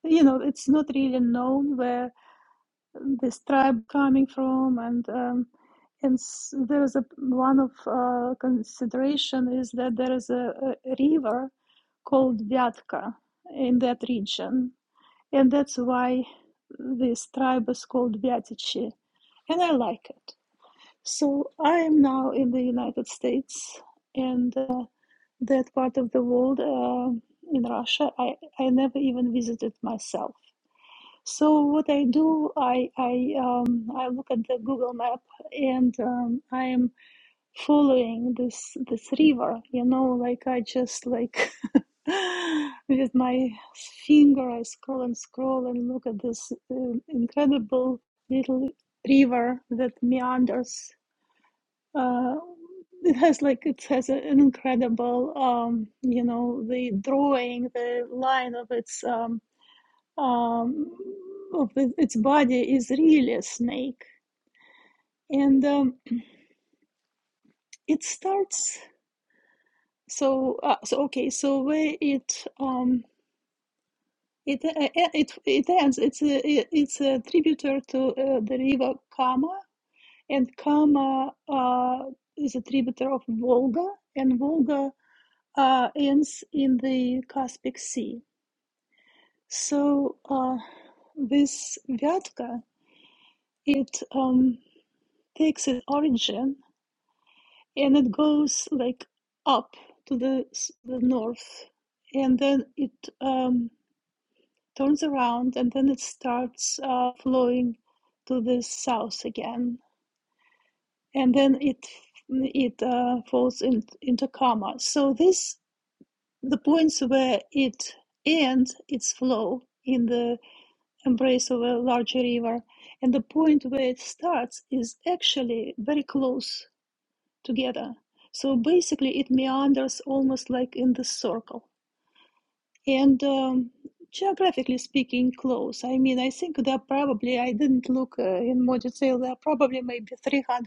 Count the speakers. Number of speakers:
1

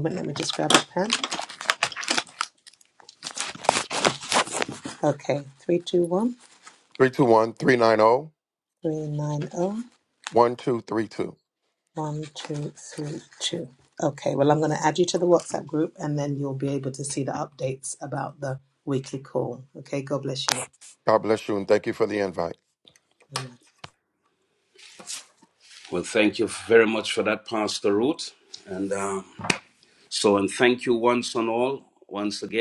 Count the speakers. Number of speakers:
3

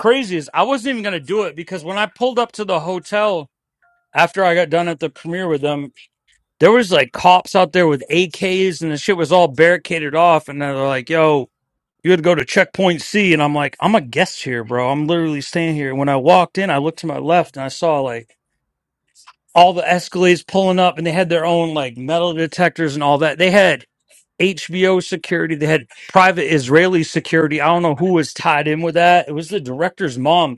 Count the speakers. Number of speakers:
1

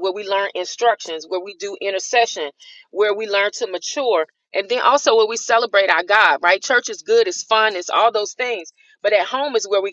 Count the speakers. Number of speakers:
1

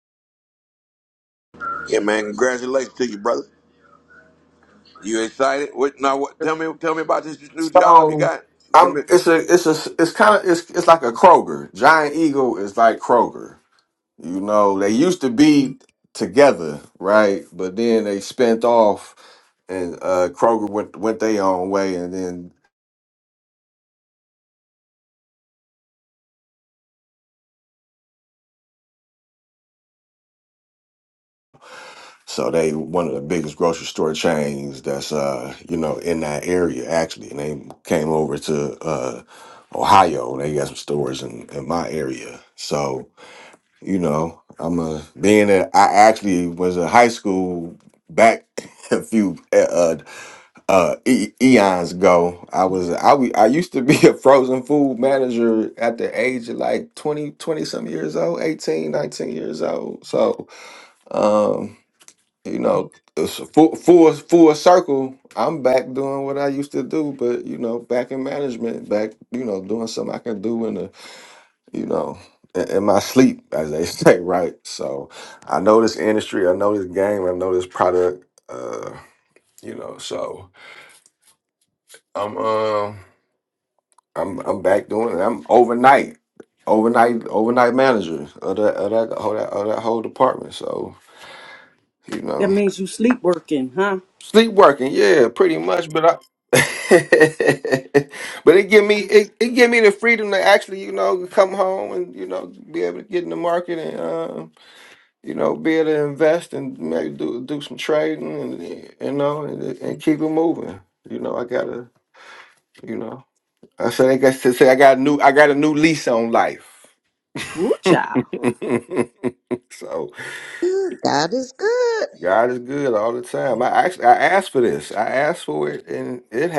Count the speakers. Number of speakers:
4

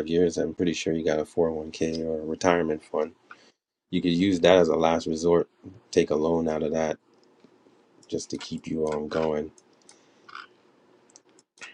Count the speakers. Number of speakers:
1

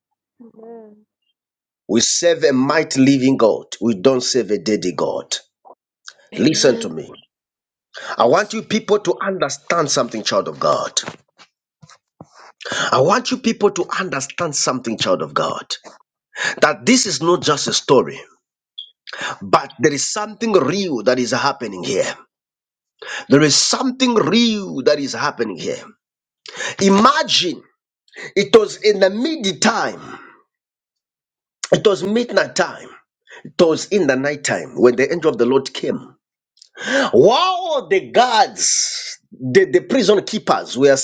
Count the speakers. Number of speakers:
2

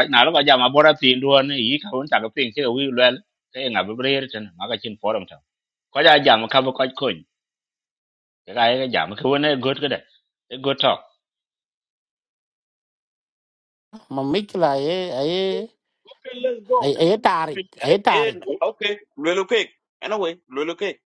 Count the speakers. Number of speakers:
3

